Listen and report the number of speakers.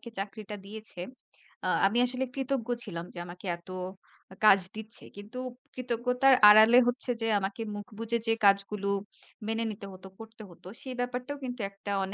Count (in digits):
1